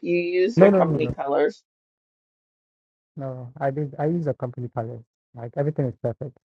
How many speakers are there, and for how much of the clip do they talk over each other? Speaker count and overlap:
2, about 9%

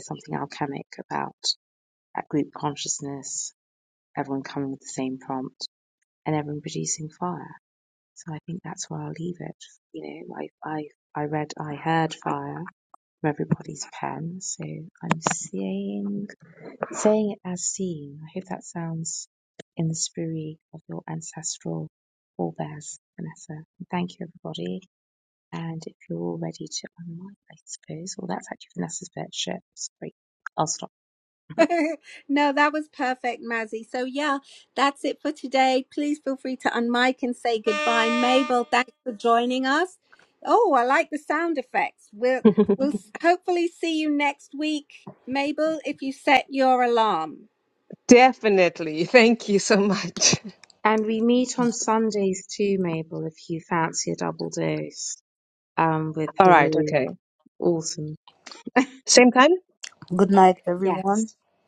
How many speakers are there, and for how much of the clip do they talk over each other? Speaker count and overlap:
4, about 1%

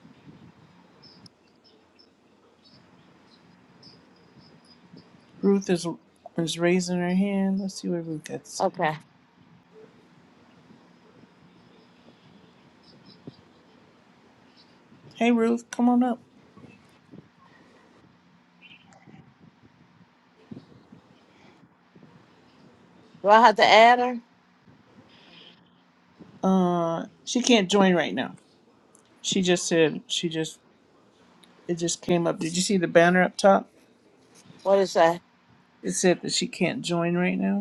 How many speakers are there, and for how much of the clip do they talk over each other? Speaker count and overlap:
2, no overlap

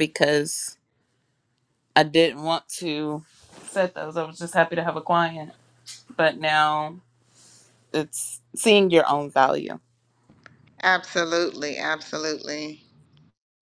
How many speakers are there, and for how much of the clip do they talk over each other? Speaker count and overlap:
2, no overlap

